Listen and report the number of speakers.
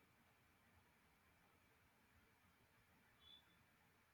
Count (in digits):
0